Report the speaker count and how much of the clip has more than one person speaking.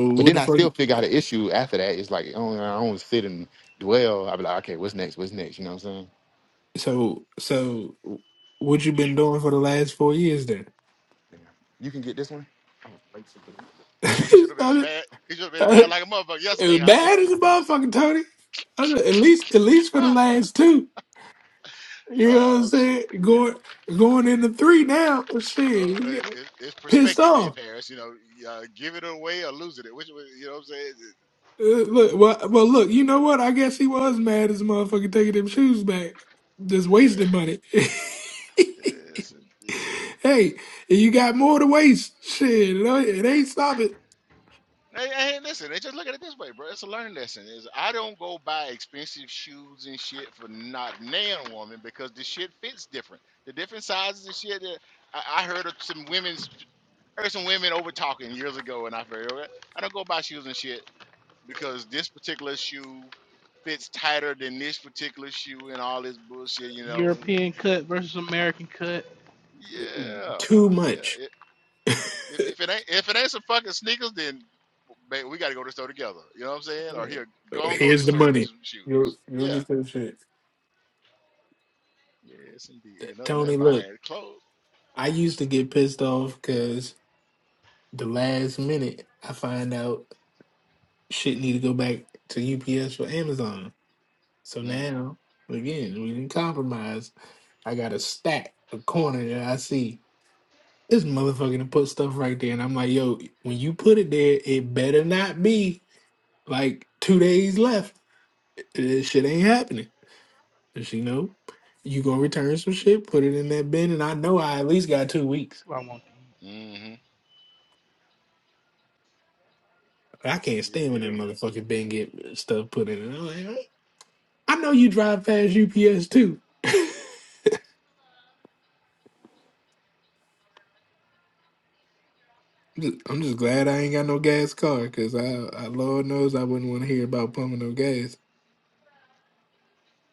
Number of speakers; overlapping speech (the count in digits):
4, about 7%